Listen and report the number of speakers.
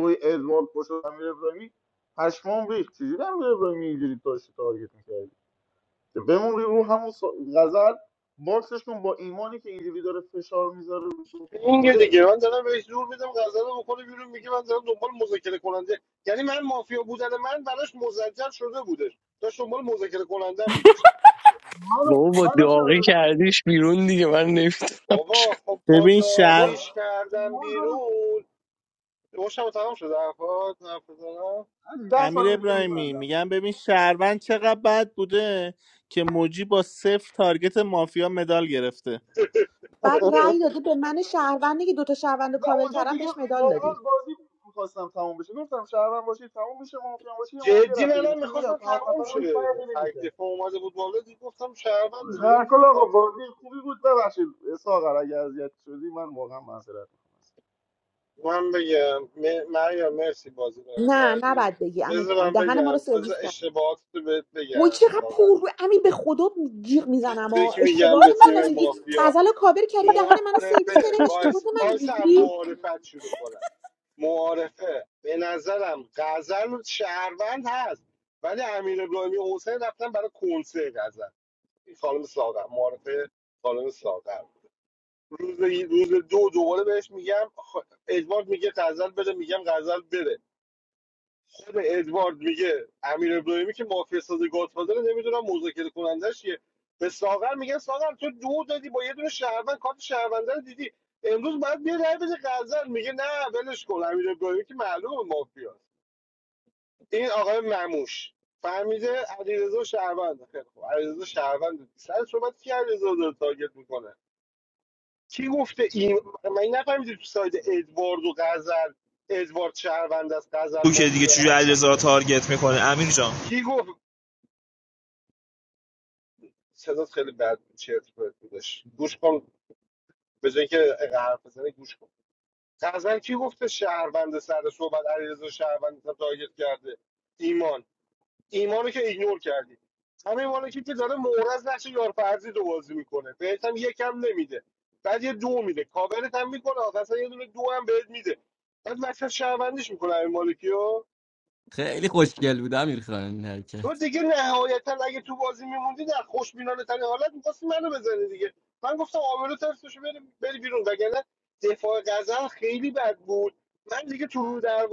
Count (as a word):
seven